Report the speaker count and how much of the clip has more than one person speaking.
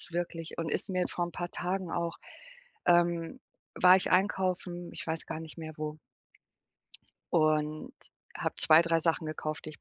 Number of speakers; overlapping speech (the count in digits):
1, no overlap